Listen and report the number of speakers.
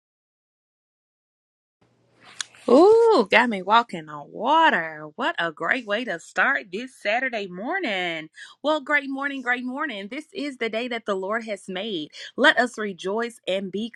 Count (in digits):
1